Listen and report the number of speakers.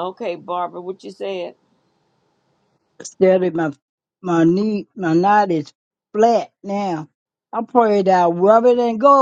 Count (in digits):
2